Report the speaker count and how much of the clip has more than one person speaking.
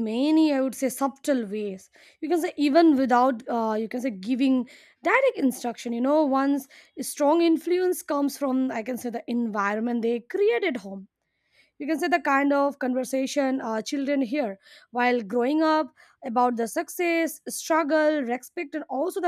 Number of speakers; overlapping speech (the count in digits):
1, no overlap